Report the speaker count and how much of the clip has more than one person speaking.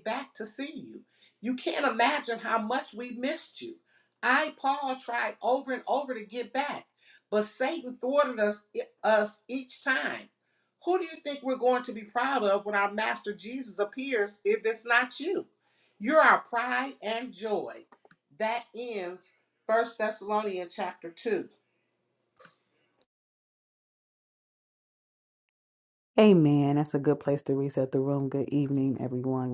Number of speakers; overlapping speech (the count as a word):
two, no overlap